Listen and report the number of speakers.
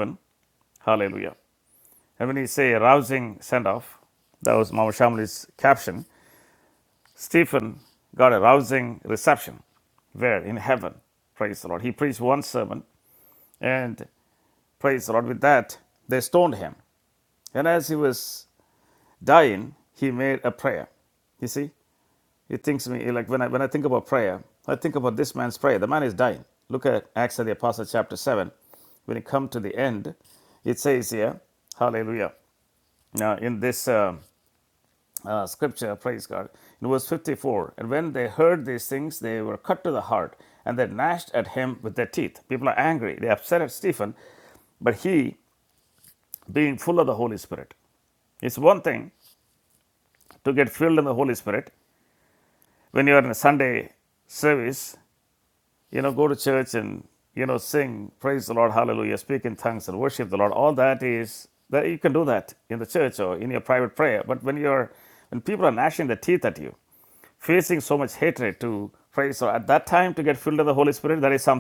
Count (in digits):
1